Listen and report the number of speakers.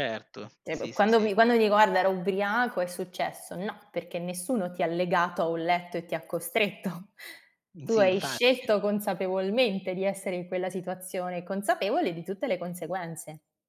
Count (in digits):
2